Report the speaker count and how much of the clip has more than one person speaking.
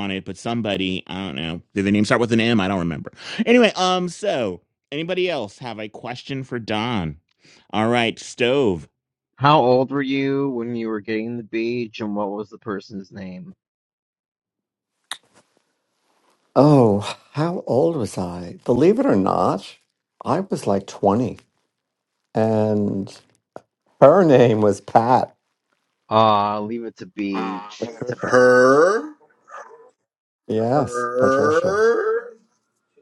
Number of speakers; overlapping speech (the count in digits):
4, about 4%